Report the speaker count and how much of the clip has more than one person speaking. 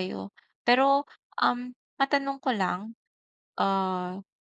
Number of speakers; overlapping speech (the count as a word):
one, no overlap